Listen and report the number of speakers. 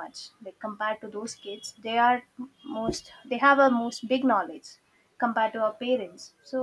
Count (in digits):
1